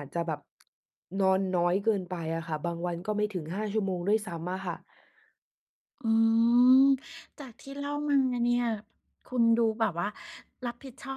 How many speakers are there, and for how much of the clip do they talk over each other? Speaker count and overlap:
two, no overlap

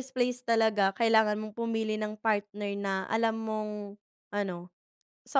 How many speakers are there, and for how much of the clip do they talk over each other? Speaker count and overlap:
one, no overlap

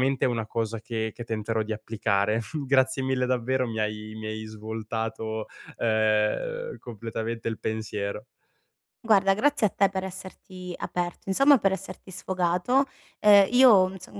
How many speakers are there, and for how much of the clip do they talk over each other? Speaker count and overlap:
two, no overlap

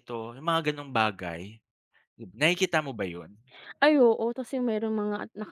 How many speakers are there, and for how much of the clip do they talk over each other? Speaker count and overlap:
two, no overlap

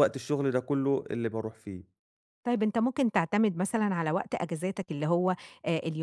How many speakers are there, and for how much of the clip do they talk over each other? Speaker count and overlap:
two, no overlap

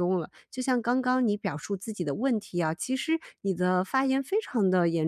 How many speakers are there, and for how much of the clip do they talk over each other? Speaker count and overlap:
one, no overlap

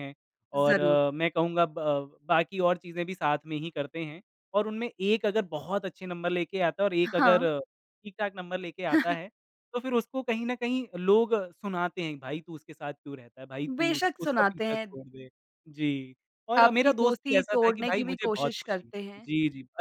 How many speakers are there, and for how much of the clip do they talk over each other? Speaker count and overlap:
two, about 19%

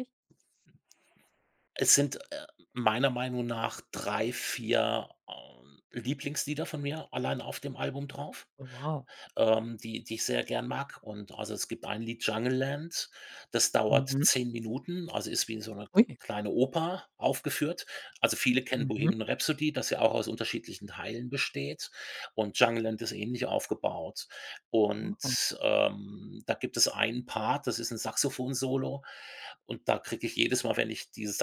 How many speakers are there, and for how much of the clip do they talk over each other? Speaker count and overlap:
two, about 3%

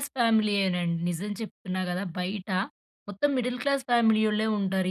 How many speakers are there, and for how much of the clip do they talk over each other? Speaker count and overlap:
one, no overlap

